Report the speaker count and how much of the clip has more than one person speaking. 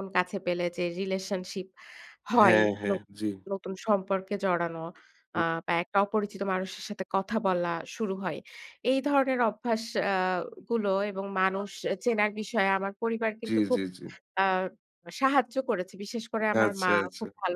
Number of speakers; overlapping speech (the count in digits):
2, about 10%